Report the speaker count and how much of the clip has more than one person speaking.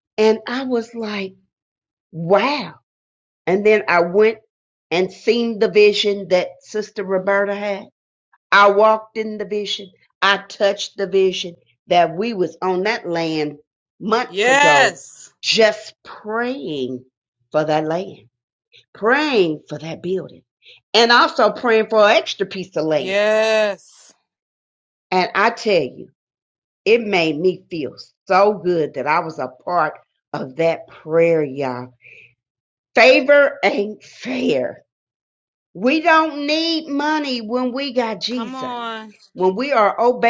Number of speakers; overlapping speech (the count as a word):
two, about 3%